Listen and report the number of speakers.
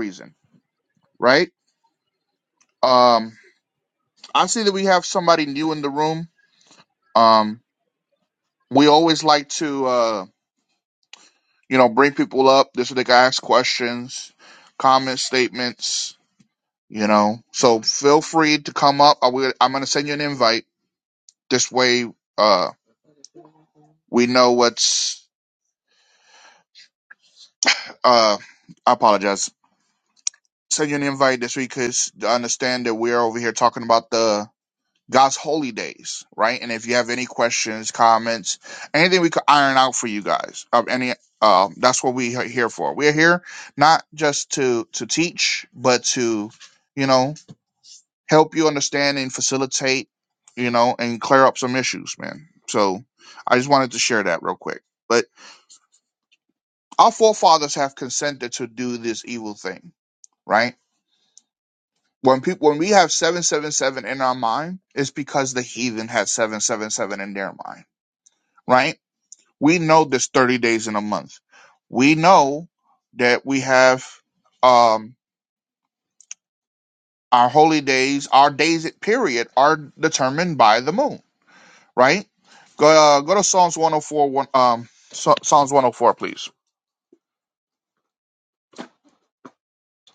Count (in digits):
1